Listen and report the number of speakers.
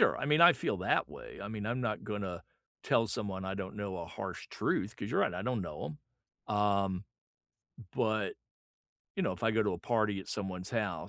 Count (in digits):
1